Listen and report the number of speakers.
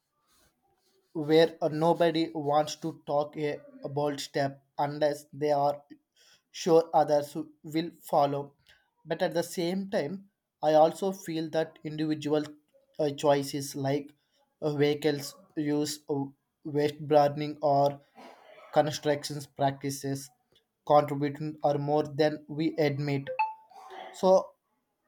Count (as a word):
one